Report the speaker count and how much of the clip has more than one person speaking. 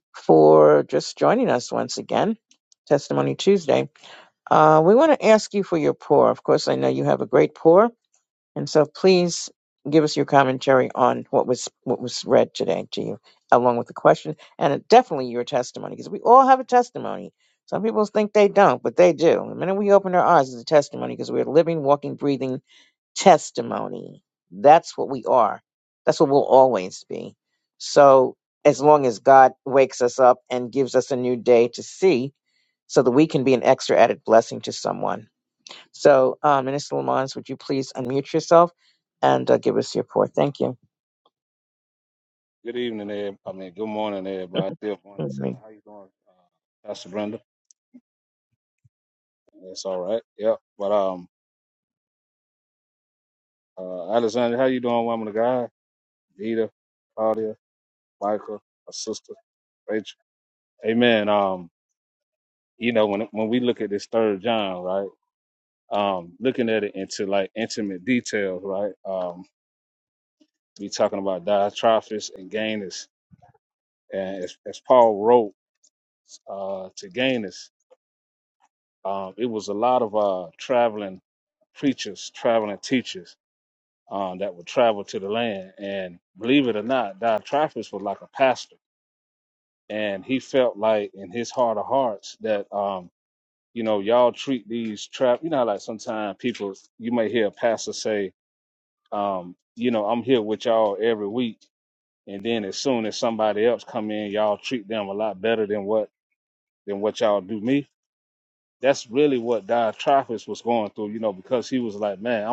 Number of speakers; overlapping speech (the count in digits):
2, under 1%